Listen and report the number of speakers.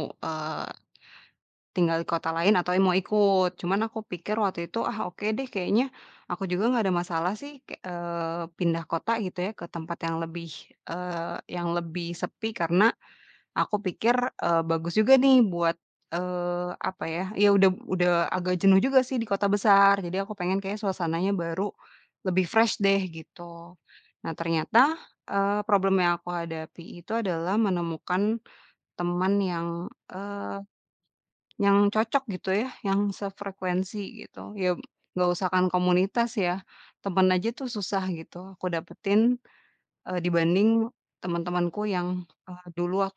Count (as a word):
one